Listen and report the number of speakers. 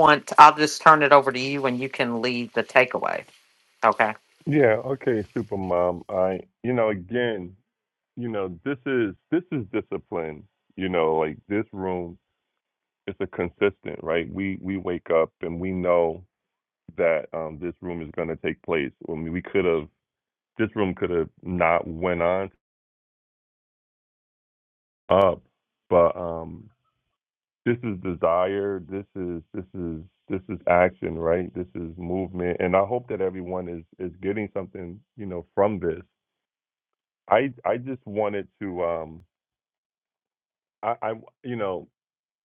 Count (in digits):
2